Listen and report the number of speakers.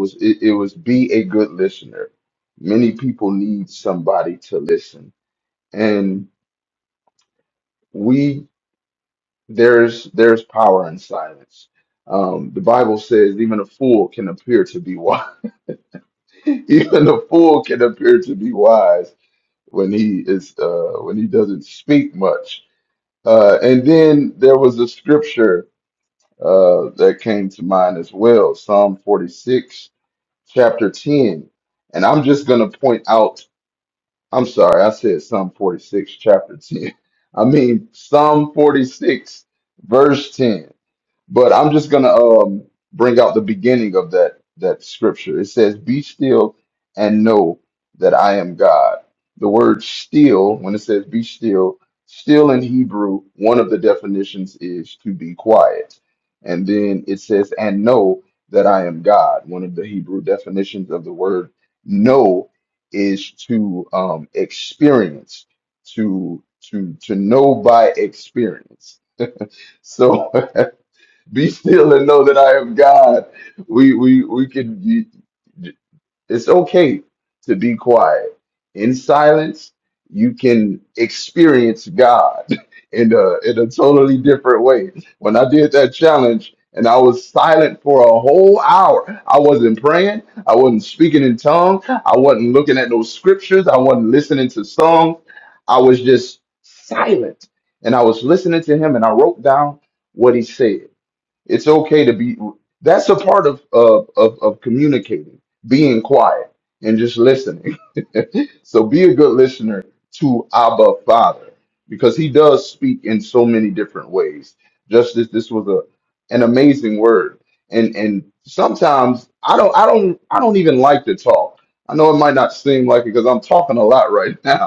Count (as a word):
one